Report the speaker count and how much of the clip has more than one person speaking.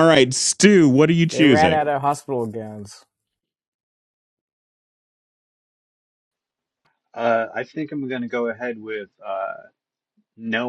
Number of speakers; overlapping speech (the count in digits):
3, about 4%